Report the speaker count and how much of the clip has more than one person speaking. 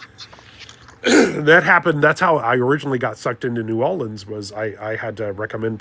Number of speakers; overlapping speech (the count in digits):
1, no overlap